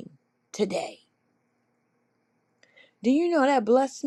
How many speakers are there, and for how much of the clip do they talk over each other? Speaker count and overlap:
1, no overlap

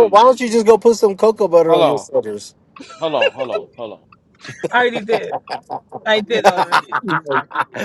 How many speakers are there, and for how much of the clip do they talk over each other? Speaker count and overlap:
3, about 8%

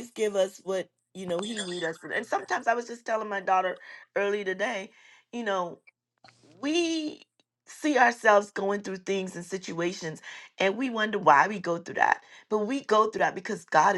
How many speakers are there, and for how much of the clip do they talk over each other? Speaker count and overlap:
1, no overlap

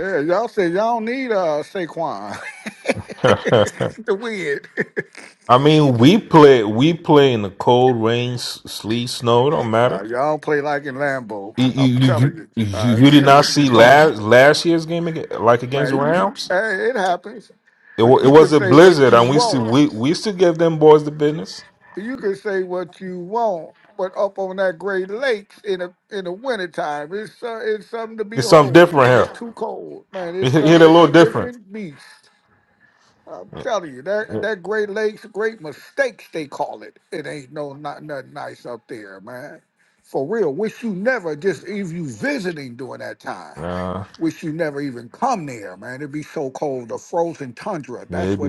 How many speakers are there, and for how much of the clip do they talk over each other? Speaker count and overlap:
2, about 15%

